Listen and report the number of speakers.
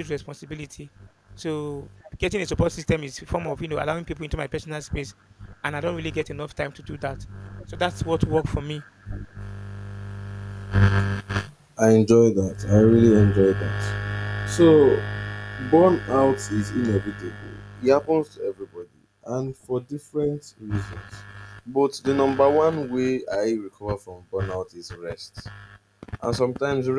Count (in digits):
2